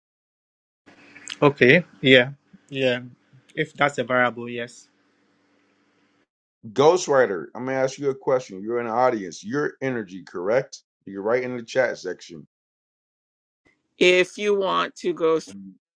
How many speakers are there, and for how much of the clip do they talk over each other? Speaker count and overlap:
three, no overlap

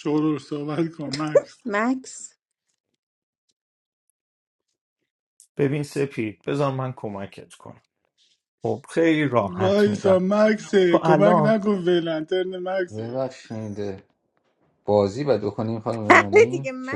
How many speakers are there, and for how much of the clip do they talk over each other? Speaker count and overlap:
four, about 15%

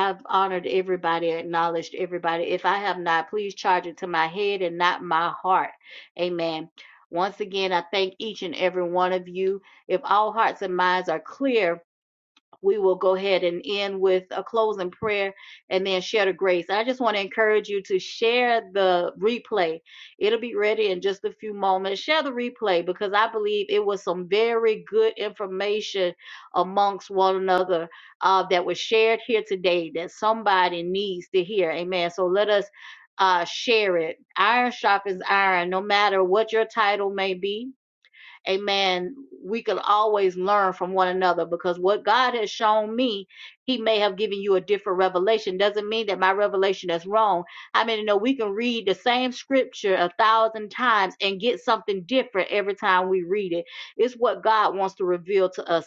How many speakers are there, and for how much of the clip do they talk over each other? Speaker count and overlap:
one, no overlap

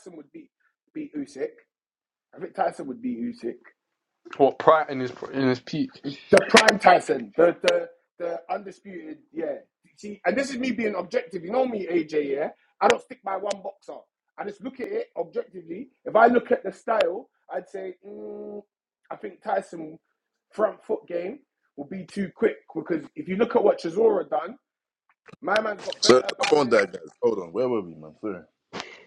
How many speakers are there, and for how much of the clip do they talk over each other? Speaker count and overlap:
three, about 3%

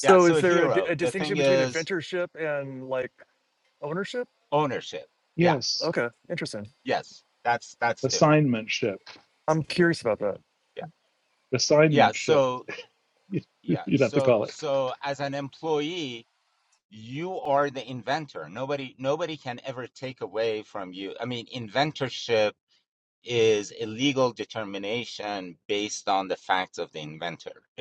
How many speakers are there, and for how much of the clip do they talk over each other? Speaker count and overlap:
three, about 12%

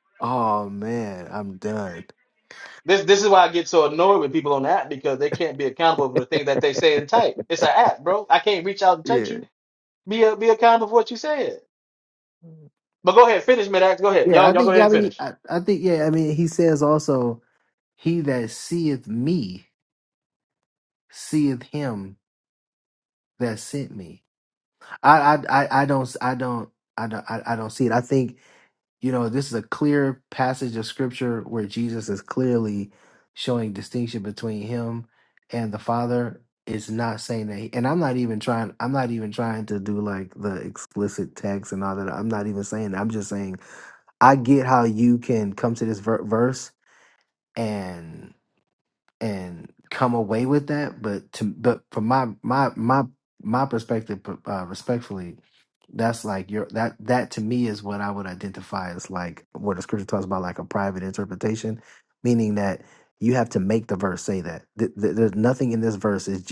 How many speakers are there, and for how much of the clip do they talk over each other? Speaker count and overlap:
two, about 1%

